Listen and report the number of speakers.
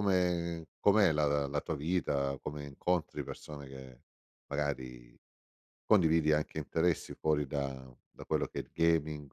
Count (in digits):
1